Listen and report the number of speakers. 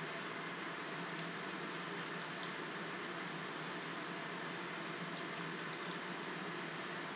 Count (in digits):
0